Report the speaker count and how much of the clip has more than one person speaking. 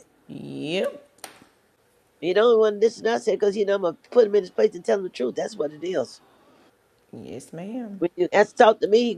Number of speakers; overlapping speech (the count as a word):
two, no overlap